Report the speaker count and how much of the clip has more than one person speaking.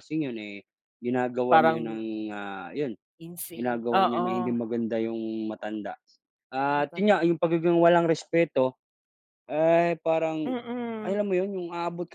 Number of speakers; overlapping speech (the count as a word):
two, about 17%